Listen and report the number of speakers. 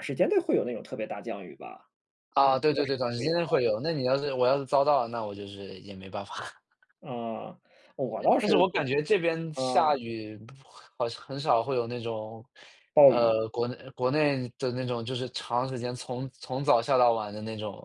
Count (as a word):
two